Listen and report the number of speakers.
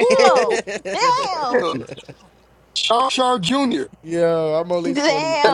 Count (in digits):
3